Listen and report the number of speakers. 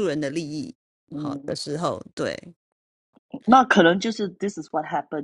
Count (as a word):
two